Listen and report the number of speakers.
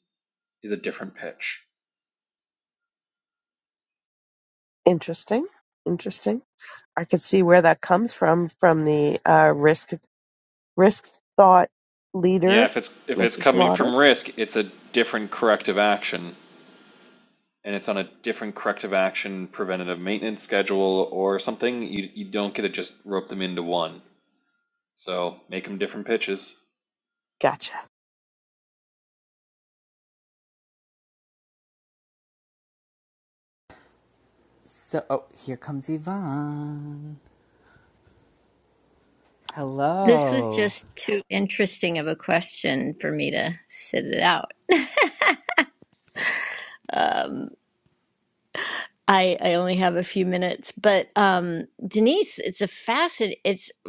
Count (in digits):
4